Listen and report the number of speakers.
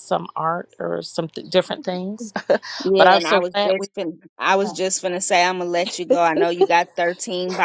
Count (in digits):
2